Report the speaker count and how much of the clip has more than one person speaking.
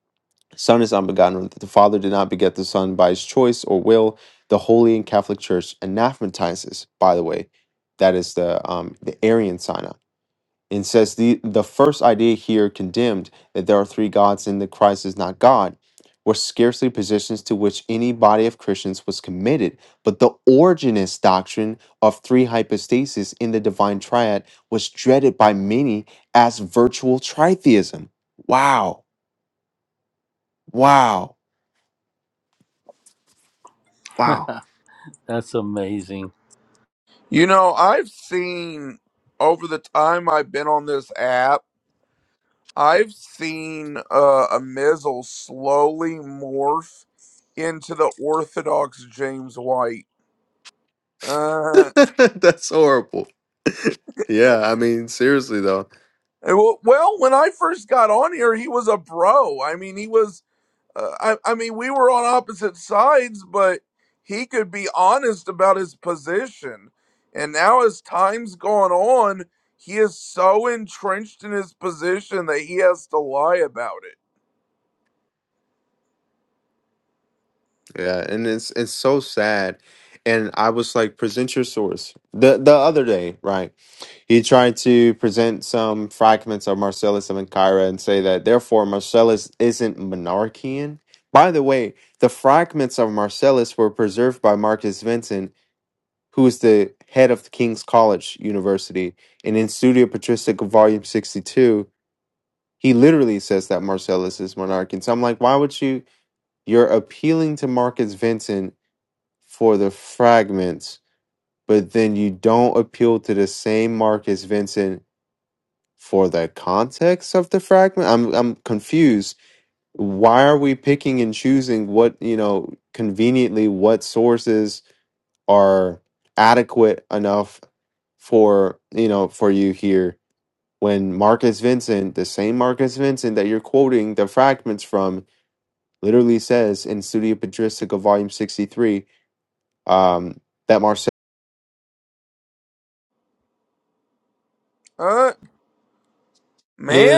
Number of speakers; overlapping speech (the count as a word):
three, under 1%